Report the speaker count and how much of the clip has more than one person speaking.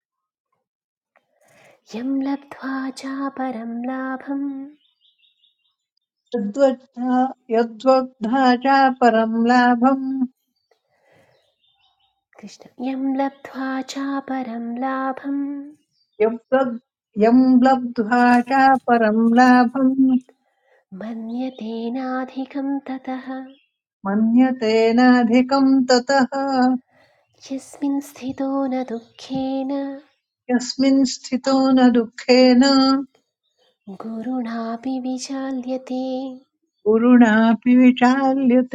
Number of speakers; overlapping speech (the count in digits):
2, no overlap